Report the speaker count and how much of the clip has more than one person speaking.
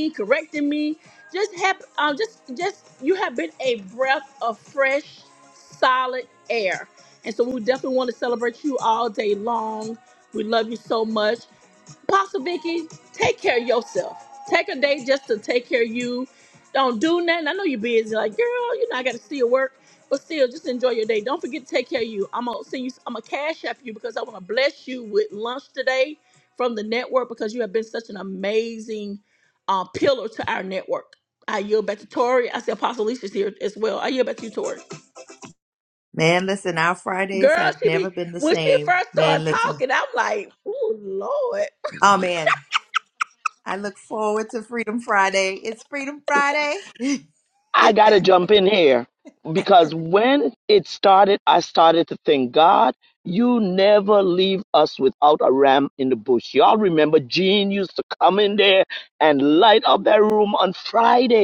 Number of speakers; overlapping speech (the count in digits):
3, about 5%